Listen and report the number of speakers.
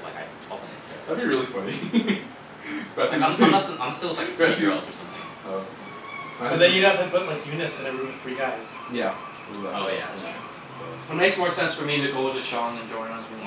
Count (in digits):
4